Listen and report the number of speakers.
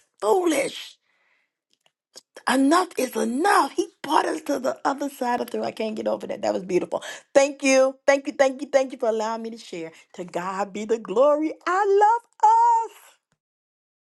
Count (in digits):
1